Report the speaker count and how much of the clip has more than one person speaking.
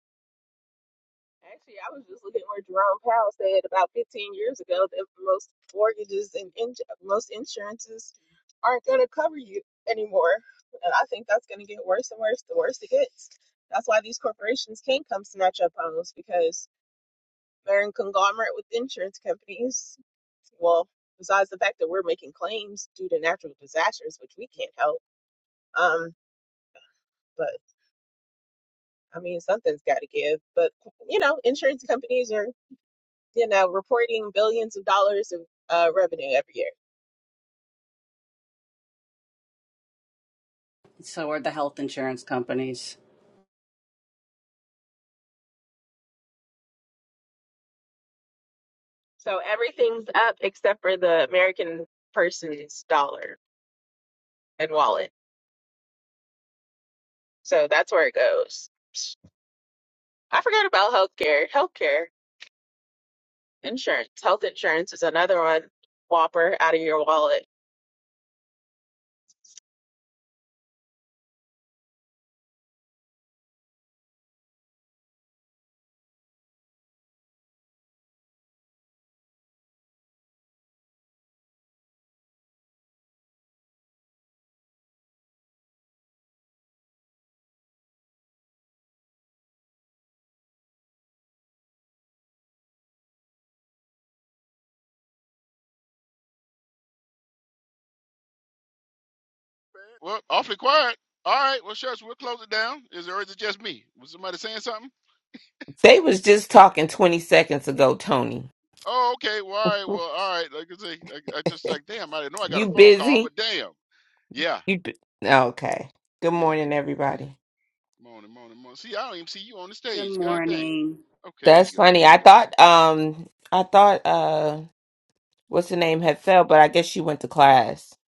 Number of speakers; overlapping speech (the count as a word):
four, about 2%